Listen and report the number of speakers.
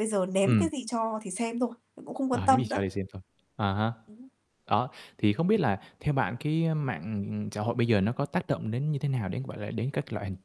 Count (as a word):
two